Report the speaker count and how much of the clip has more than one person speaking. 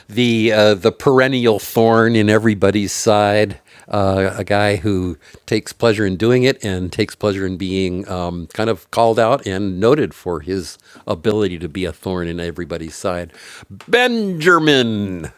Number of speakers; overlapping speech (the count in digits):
1, no overlap